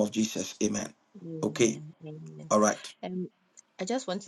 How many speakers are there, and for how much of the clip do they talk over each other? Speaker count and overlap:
2, about 8%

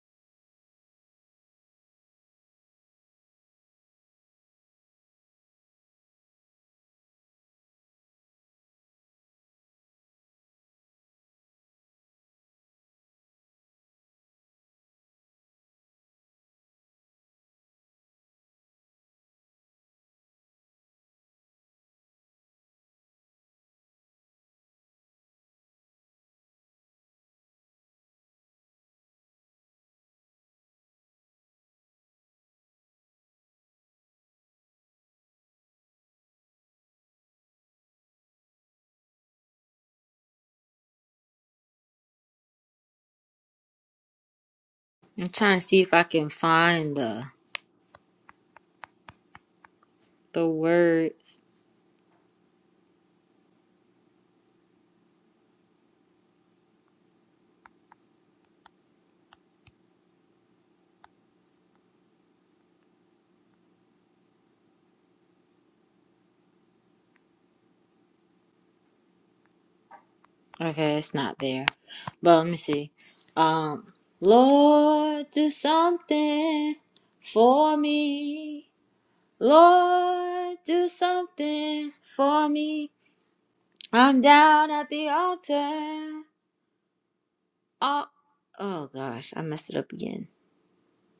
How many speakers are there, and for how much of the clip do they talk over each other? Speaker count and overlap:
1, no overlap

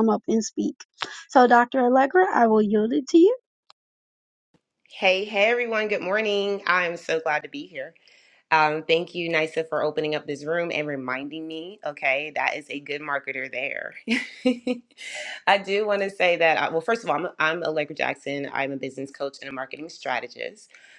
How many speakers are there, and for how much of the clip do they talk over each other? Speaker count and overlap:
2, no overlap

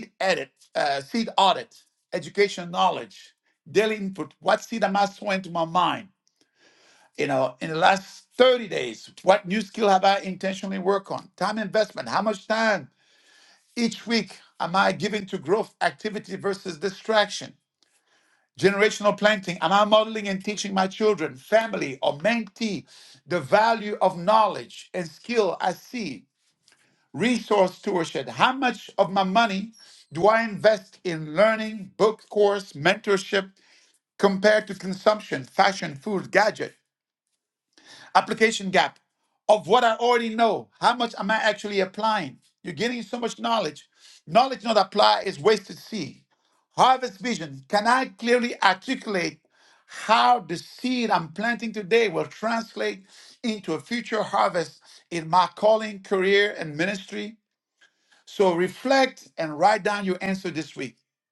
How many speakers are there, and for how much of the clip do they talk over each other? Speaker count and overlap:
1, no overlap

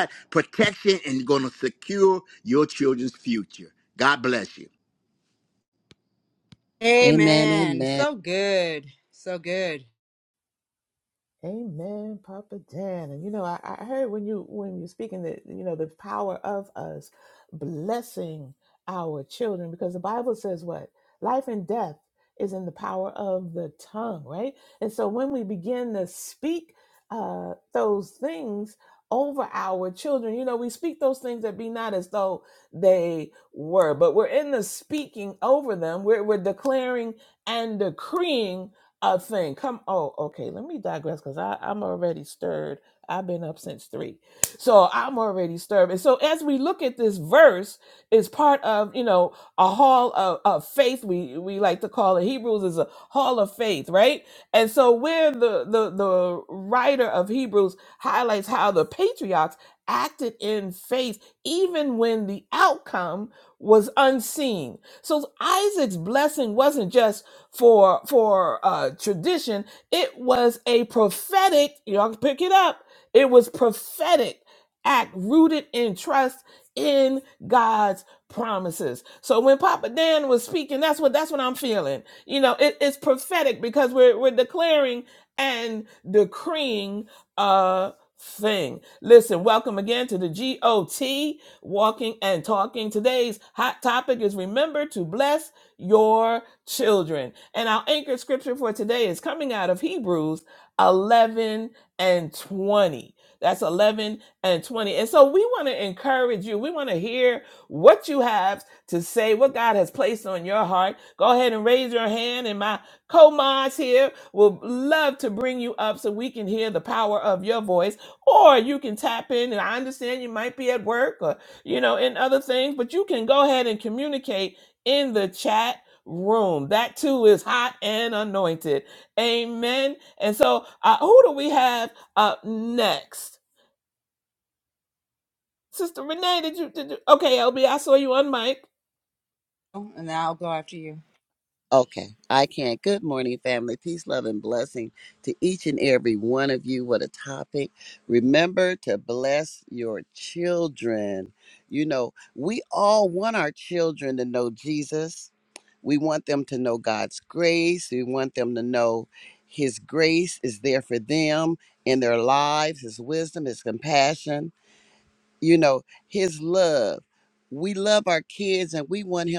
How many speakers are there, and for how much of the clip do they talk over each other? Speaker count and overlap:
4, about 1%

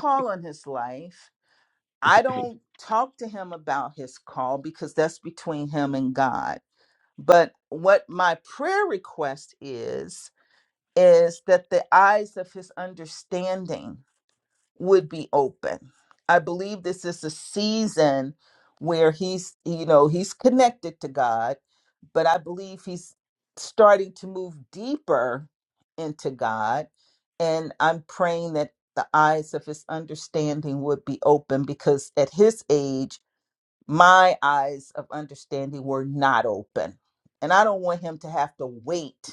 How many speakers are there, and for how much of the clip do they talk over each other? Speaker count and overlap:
1, no overlap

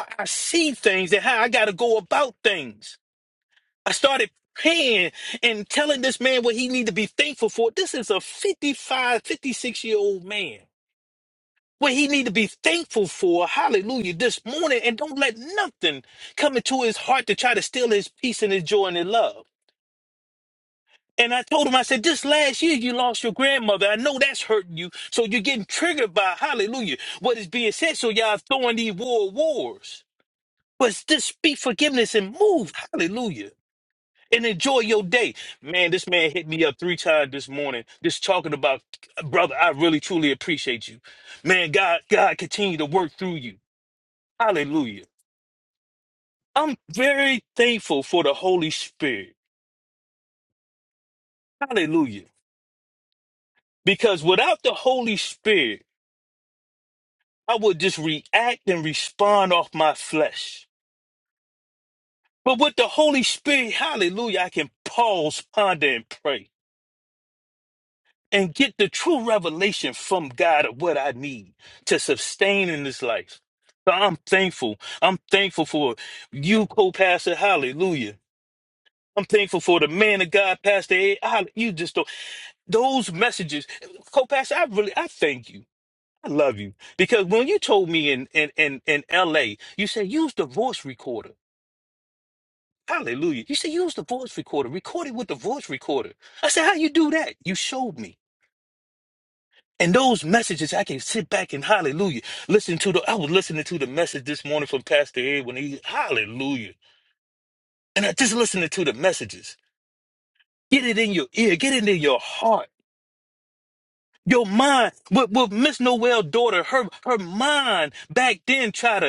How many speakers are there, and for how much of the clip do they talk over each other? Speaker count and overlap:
1, no overlap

